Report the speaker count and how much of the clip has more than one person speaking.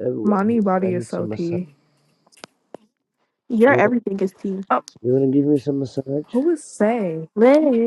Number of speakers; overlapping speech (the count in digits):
3, about 18%